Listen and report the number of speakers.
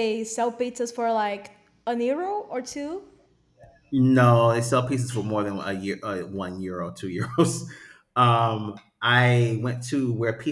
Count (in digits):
2